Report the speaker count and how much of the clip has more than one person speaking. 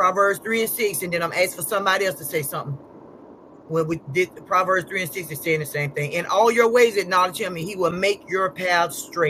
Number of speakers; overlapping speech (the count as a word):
one, no overlap